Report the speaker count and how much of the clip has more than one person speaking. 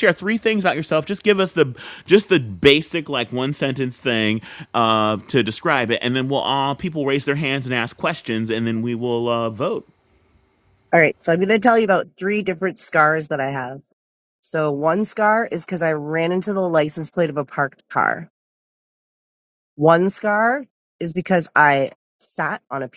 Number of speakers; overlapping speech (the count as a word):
two, no overlap